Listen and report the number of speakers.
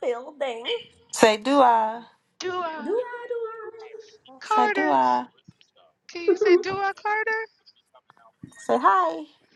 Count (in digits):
3